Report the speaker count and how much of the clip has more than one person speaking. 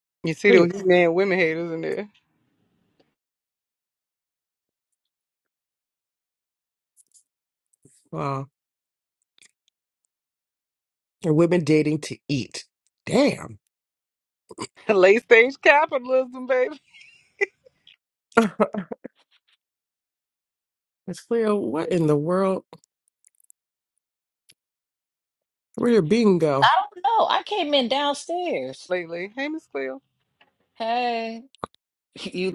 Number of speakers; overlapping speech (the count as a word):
three, under 1%